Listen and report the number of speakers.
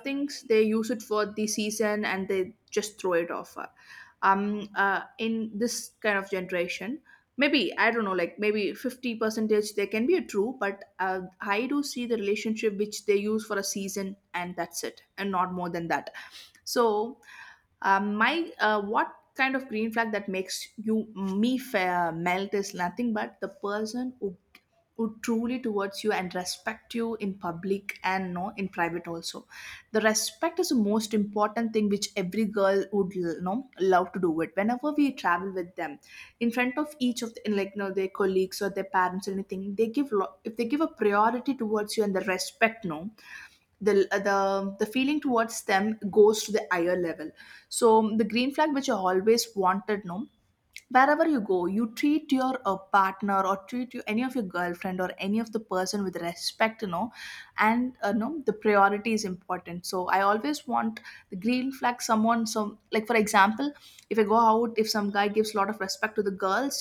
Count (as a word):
one